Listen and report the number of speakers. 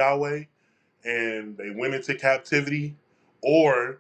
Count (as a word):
one